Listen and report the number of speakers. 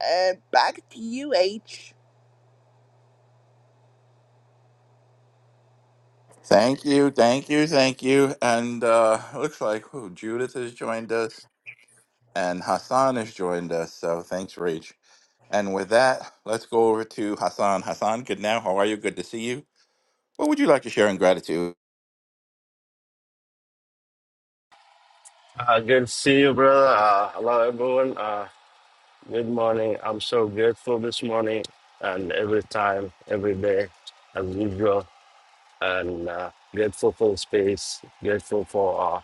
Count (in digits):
3